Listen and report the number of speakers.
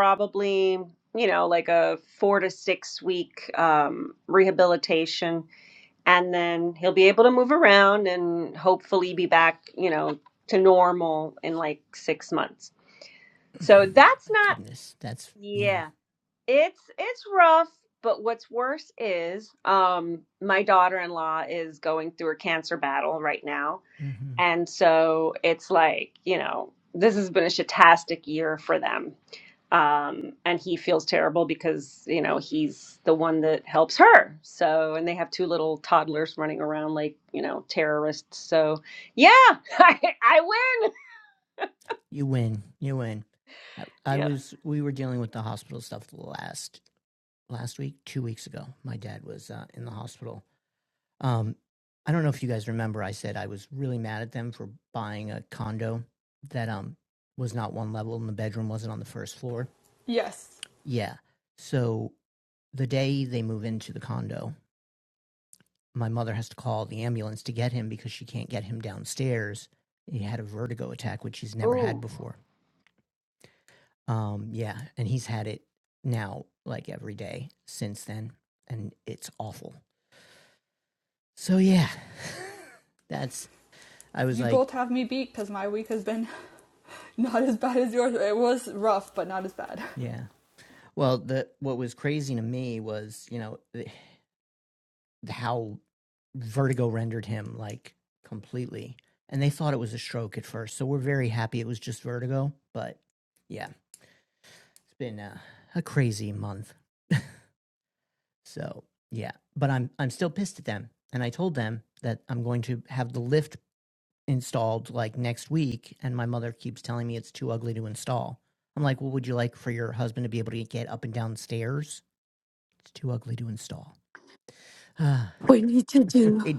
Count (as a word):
four